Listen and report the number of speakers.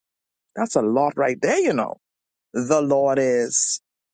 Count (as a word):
one